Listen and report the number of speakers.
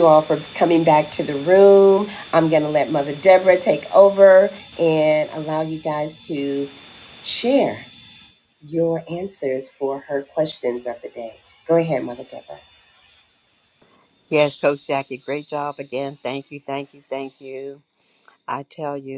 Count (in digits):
2